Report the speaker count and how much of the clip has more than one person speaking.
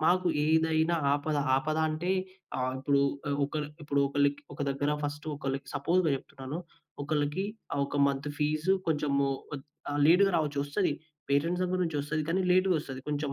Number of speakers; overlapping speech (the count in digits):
1, no overlap